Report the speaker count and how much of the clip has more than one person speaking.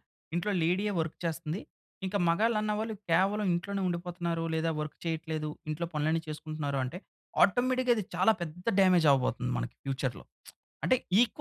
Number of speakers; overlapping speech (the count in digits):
1, no overlap